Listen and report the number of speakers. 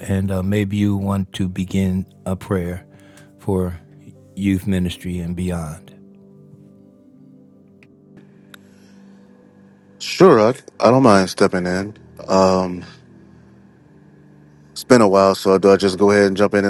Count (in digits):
2